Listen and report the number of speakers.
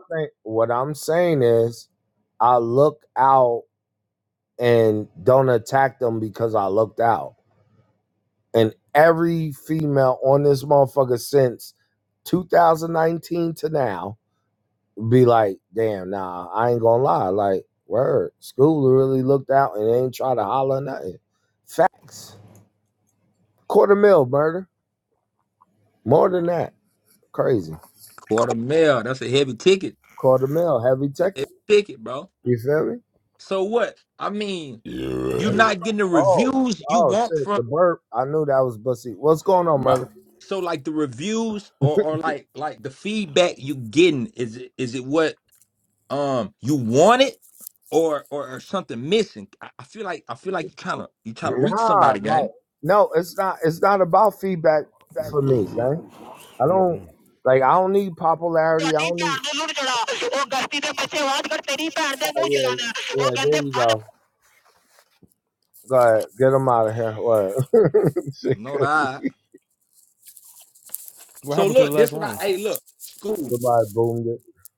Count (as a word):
four